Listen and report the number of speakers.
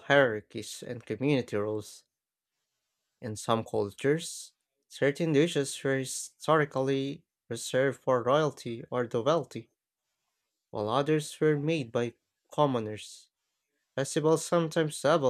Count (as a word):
one